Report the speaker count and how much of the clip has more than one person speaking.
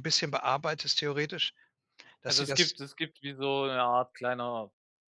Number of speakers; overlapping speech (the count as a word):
two, about 9%